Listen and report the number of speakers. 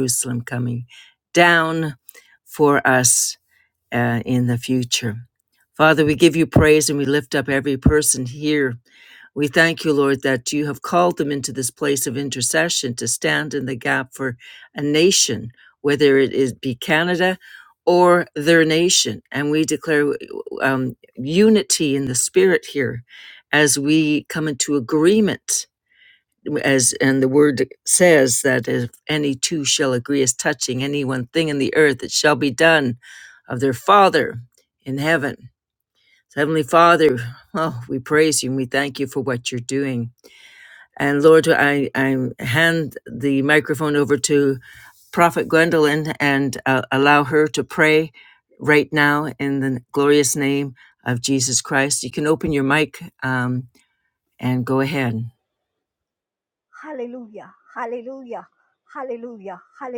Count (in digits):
2